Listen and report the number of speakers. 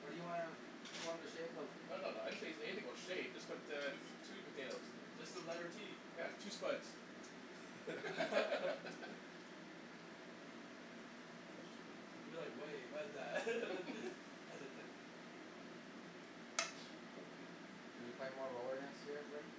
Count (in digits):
3